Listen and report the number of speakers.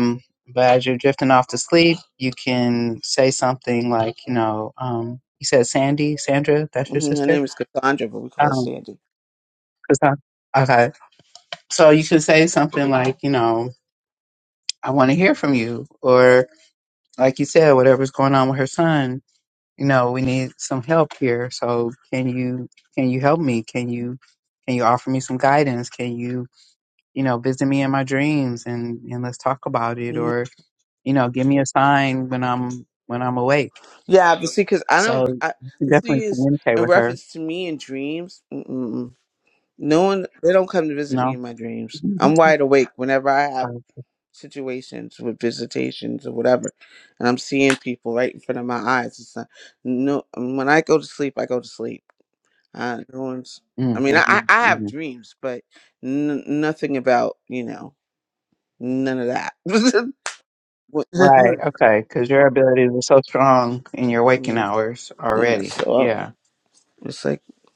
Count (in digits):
2